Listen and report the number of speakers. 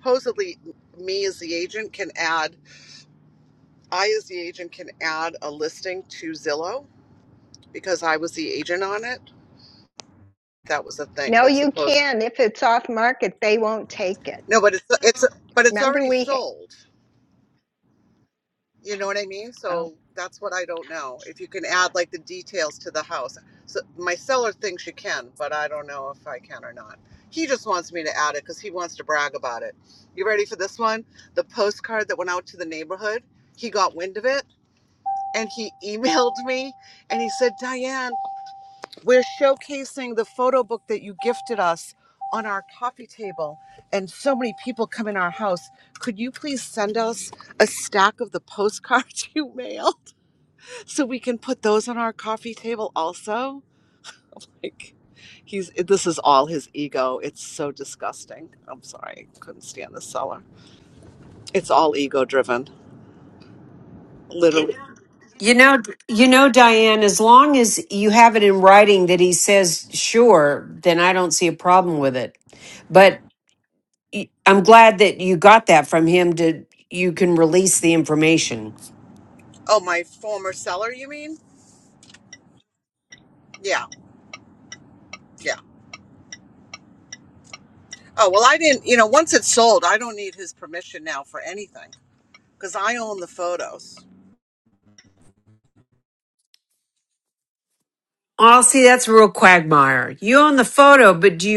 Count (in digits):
3